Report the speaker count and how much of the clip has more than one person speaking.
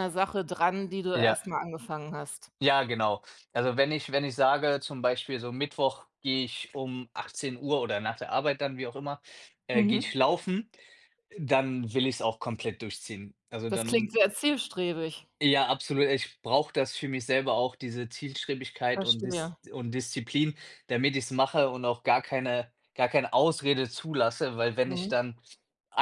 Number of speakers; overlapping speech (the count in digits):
2, about 6%